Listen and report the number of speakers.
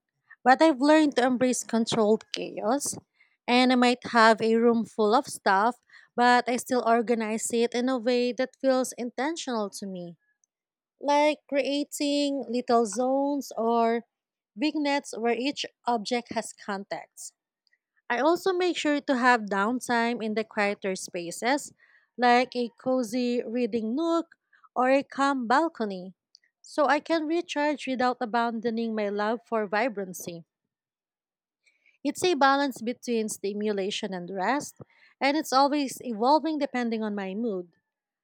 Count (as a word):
one